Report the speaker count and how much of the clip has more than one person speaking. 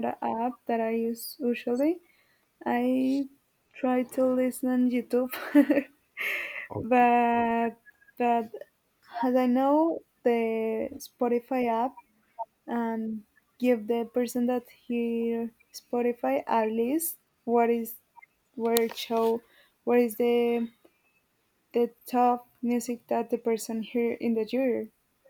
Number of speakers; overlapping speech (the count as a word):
one, no overlap